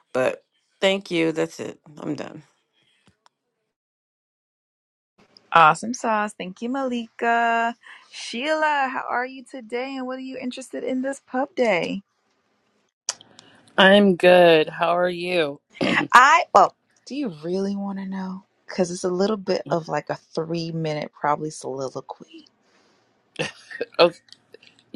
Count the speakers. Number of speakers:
three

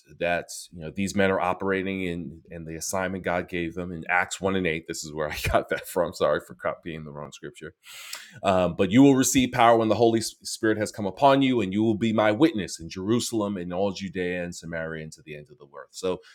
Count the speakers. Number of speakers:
one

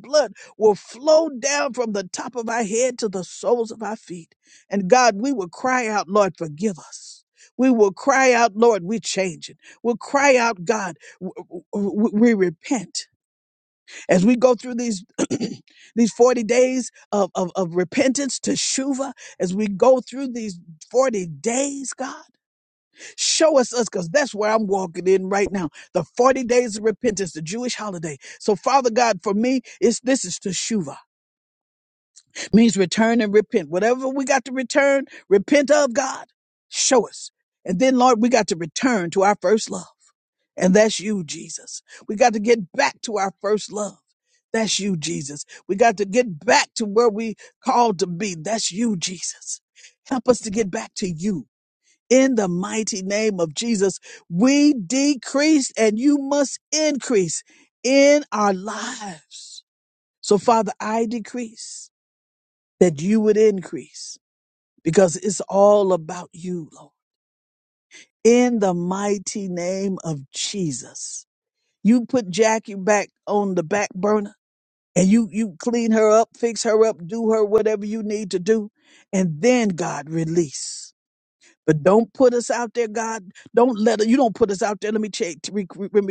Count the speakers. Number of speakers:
one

